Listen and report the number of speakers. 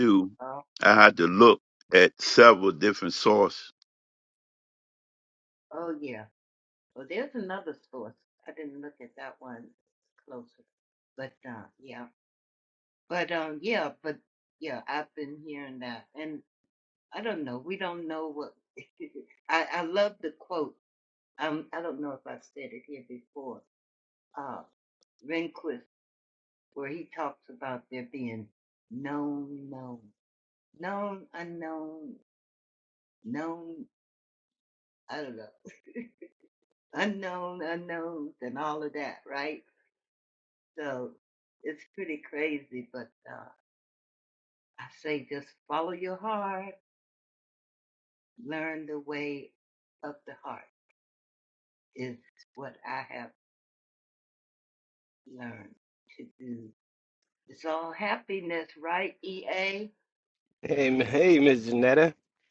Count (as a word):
three